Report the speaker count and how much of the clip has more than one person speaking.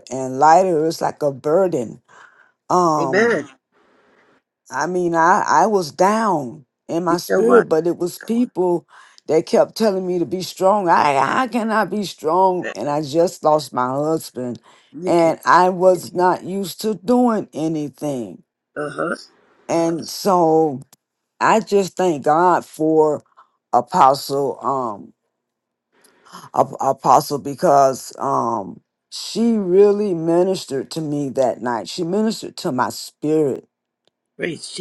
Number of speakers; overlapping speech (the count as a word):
two, about 3%